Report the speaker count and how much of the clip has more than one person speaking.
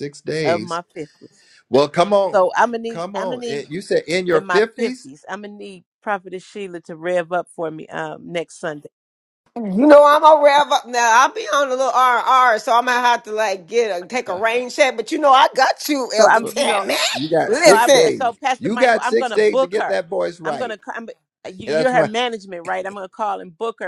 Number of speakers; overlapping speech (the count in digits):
3, about 22%